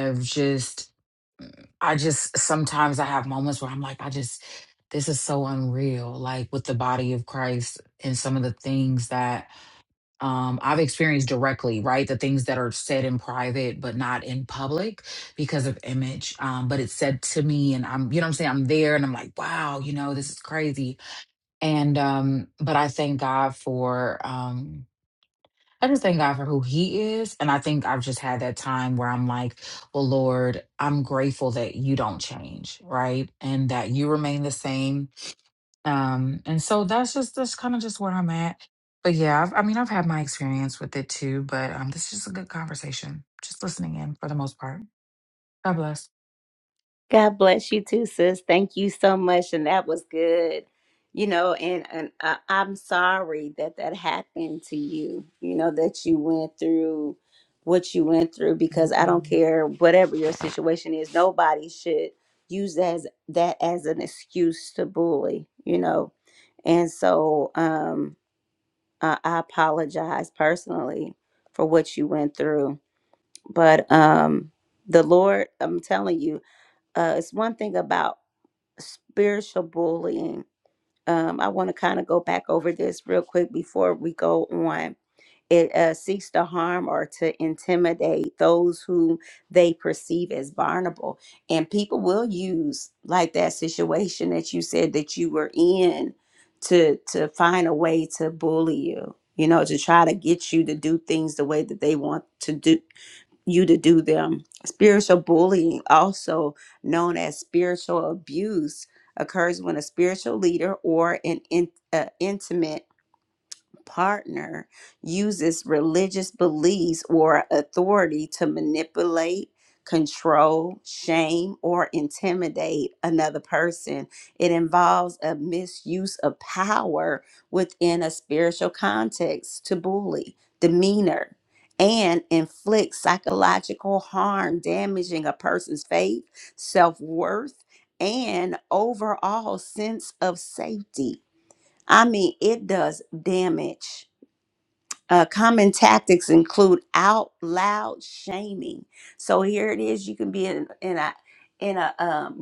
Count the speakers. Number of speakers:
2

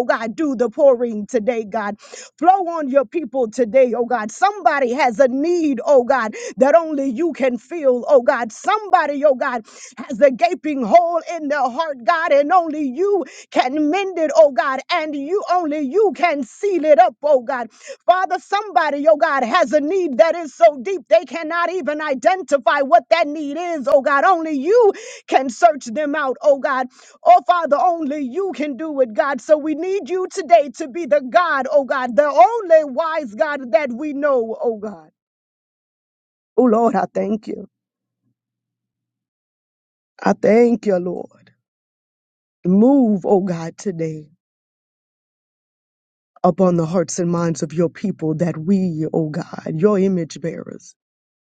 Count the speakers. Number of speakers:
1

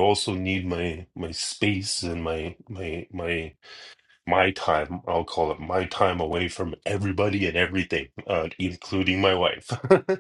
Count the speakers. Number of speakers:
1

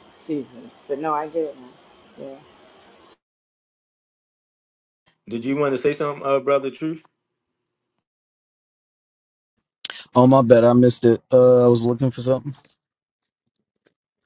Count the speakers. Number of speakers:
3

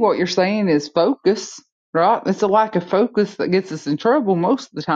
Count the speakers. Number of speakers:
1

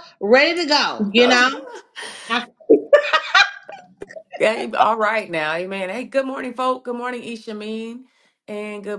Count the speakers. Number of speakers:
2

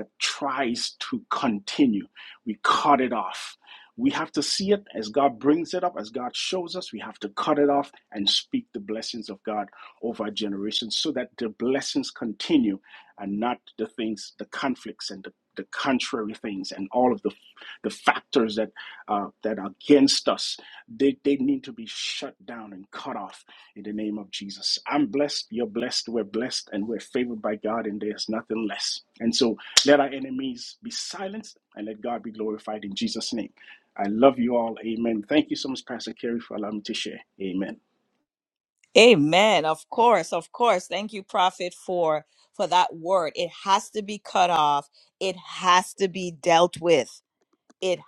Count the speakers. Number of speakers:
2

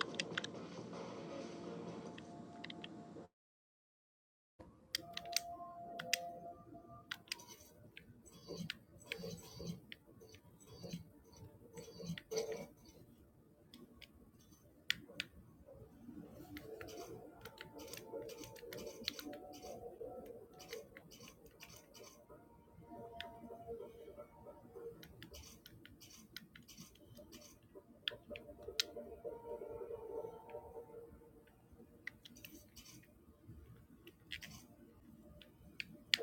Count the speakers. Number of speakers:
0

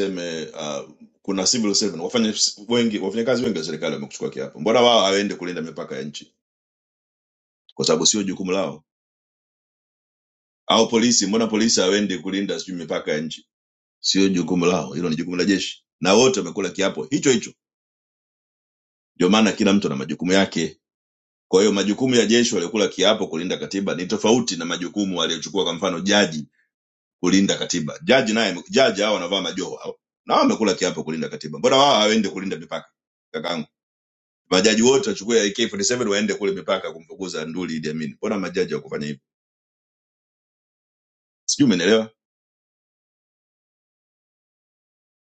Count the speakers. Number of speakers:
1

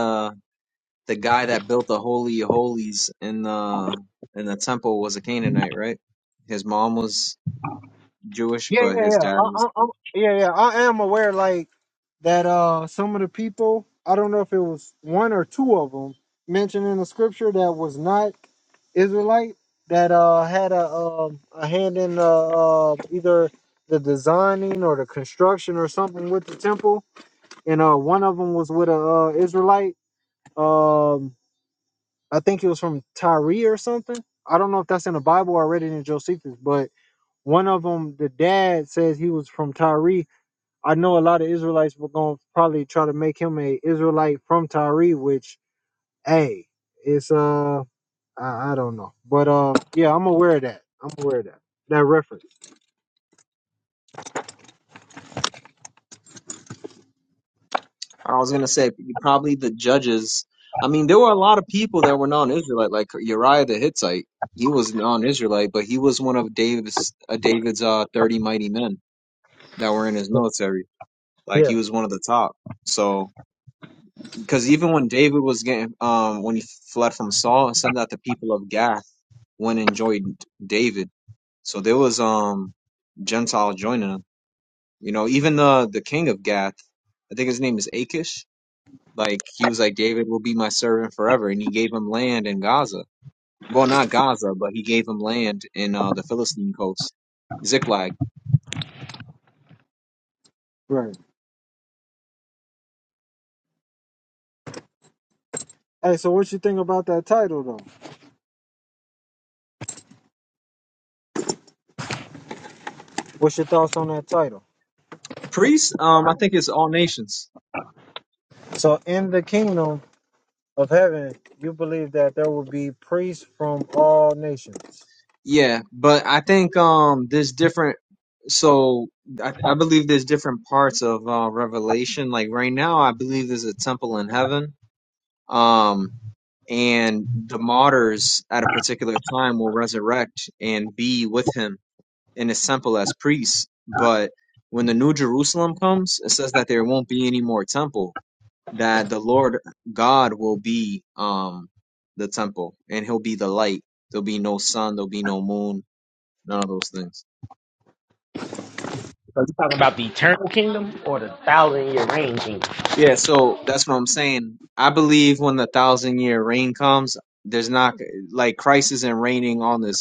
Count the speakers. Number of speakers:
3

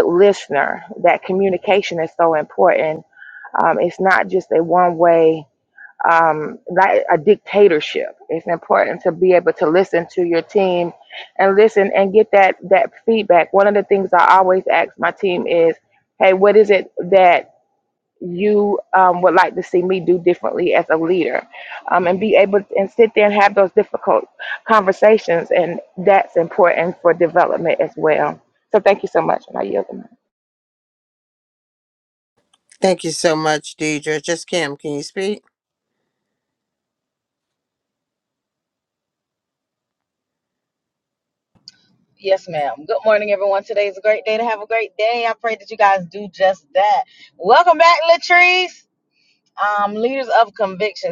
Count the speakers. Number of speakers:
3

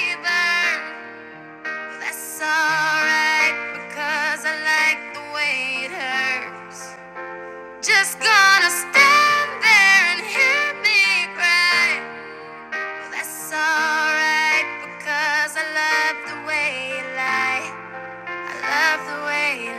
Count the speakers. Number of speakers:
1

